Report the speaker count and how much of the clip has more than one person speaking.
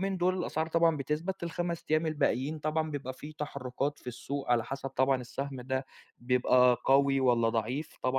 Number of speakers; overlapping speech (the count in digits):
1, no overlap